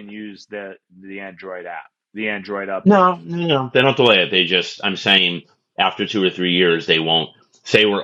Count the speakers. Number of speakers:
2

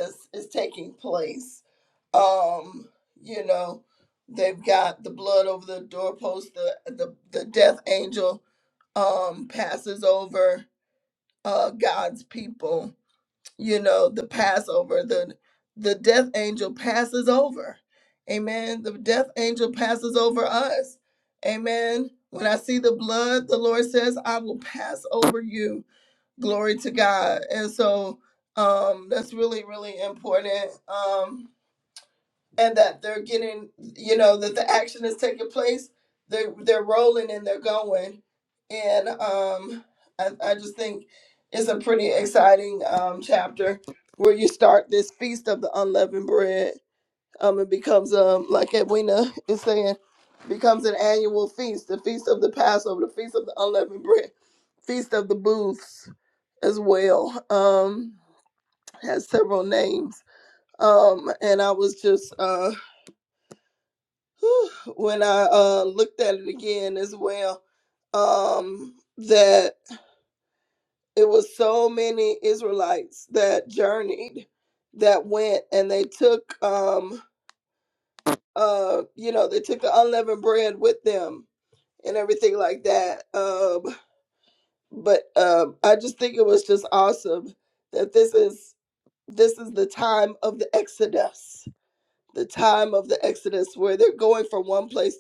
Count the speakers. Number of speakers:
1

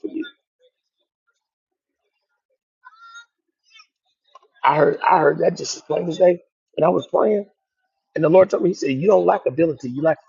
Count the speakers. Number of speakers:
1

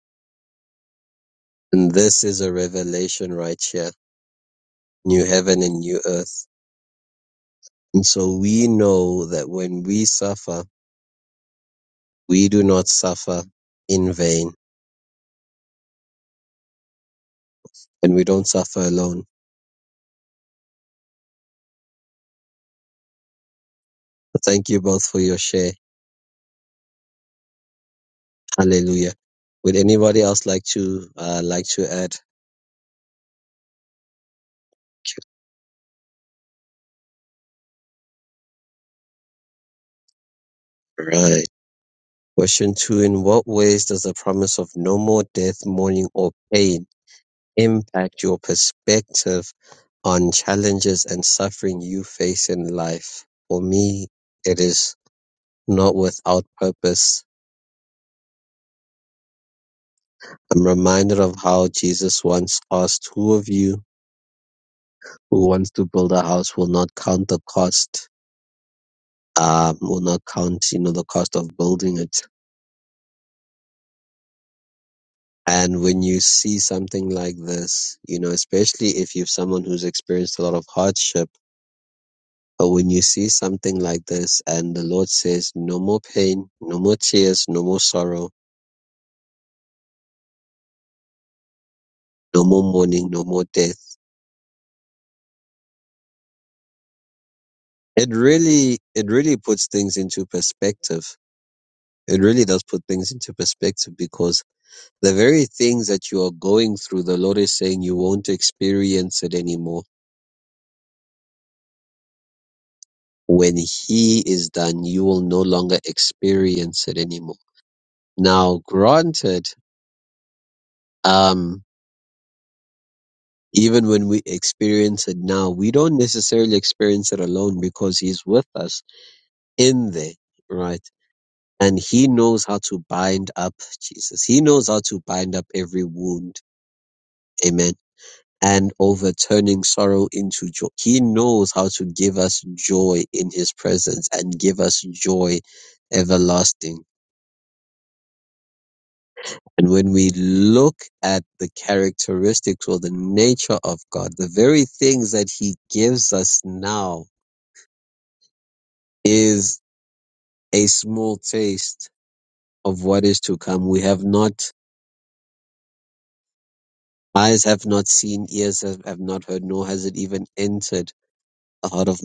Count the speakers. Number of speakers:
1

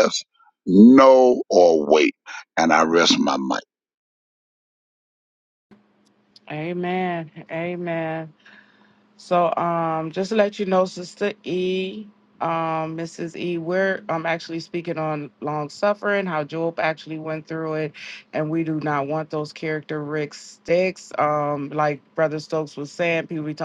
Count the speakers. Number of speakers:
2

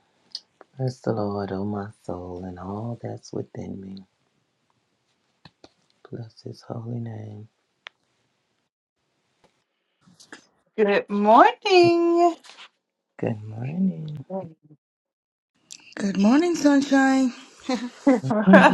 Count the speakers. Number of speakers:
3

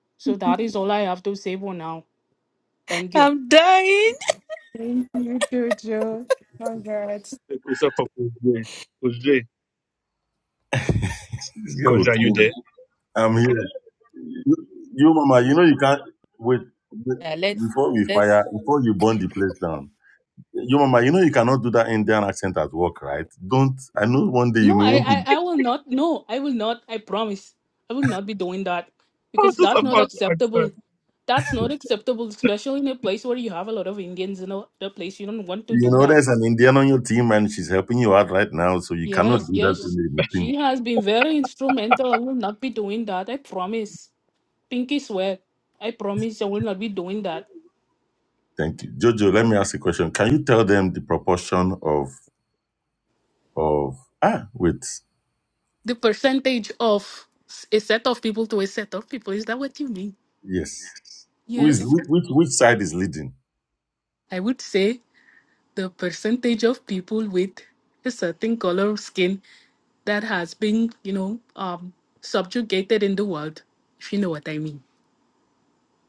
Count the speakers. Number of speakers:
5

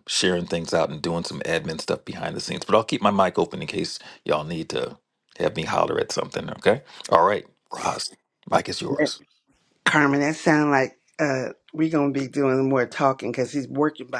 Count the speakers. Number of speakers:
2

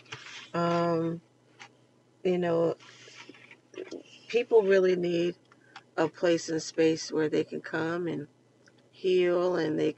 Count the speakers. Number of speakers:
1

